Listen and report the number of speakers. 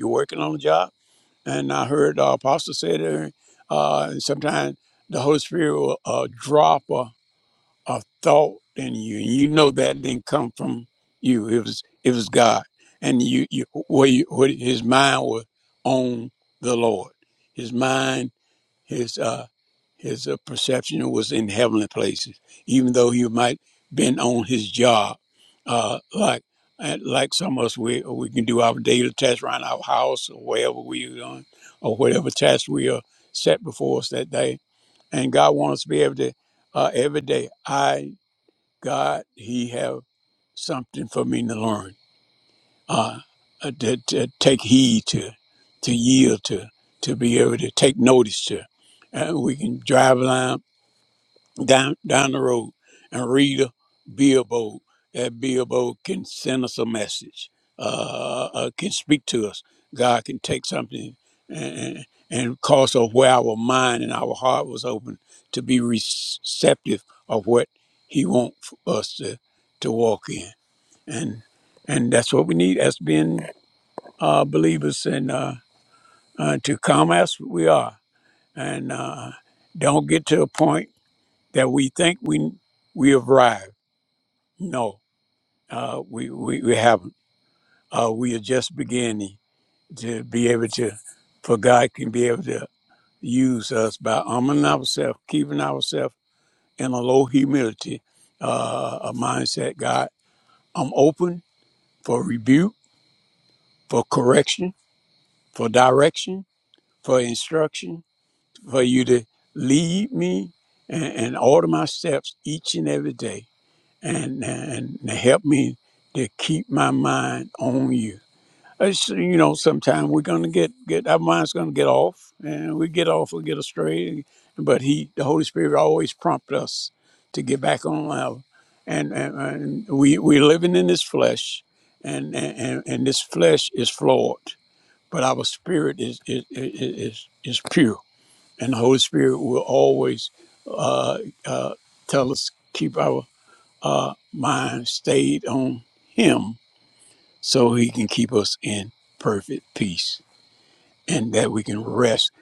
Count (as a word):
one